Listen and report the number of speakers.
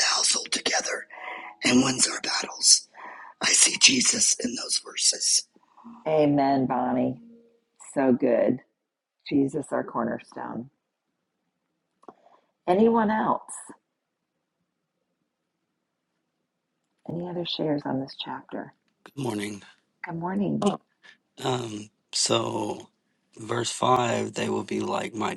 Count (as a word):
three